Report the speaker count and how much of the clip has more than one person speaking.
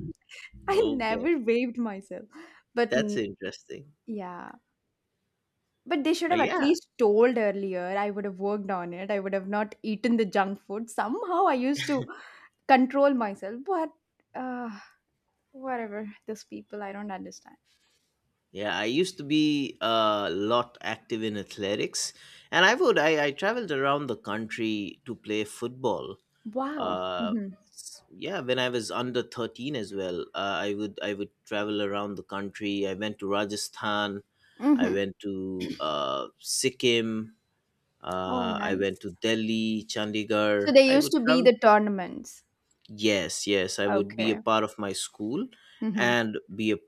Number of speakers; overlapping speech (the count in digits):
2, about 9%